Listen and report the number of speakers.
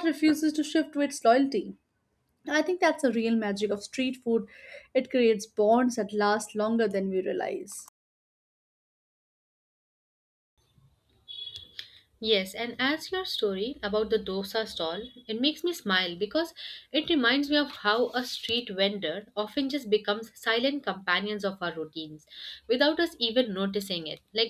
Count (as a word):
two